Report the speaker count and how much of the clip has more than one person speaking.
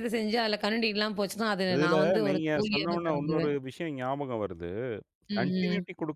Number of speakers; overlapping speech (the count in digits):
2, about 37%